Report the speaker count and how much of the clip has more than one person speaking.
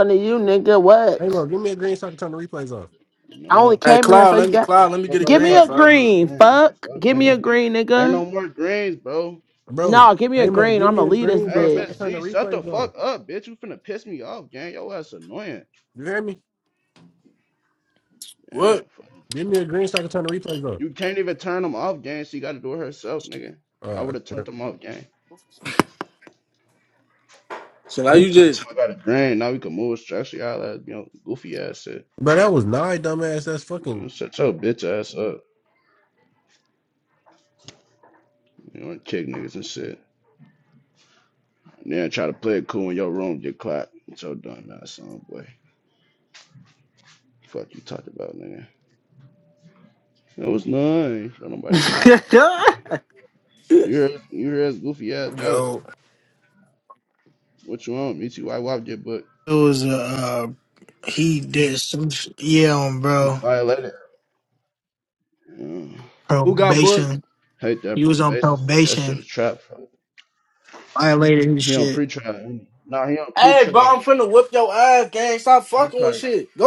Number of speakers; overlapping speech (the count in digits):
5, about 16%